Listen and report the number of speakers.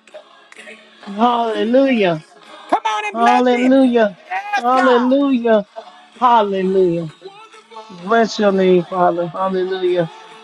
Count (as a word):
two